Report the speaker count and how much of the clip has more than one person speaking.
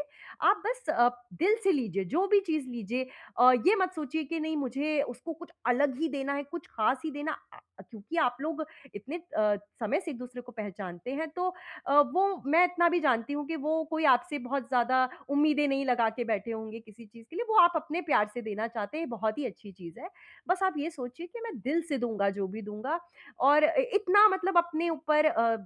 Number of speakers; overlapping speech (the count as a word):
one, no overlap